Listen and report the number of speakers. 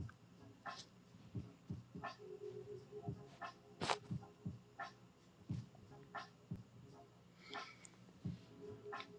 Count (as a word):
zero